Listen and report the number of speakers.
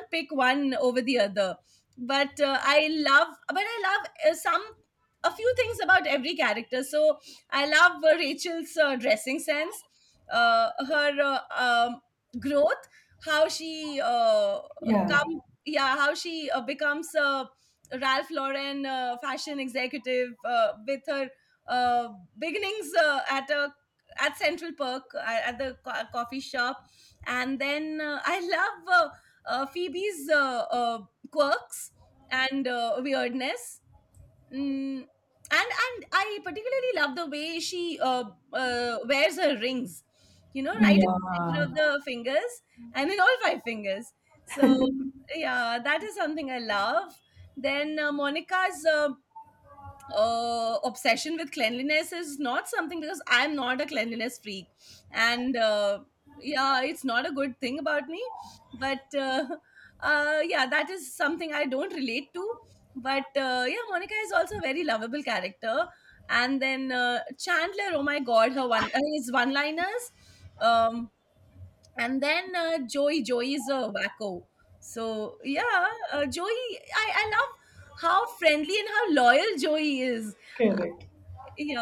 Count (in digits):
2